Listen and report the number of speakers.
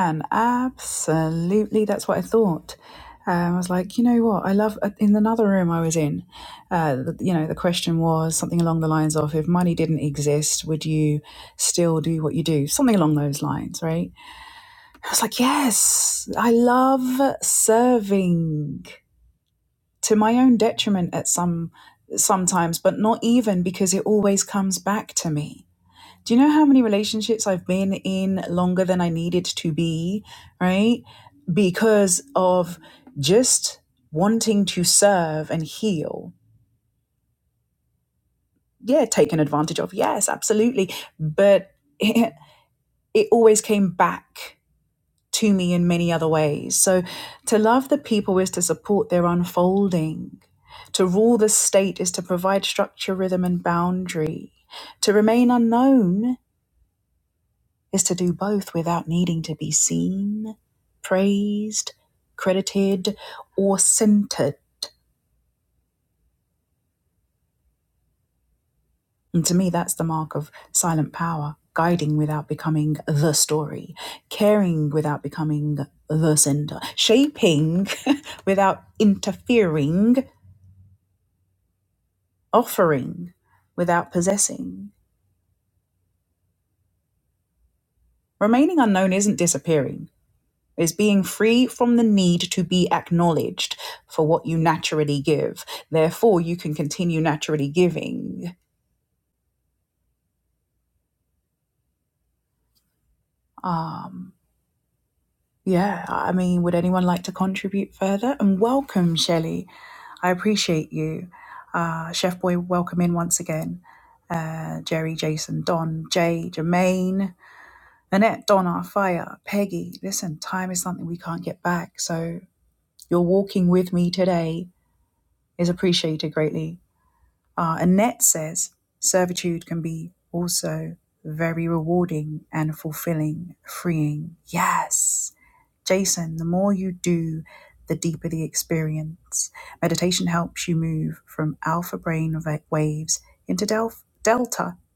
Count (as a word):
one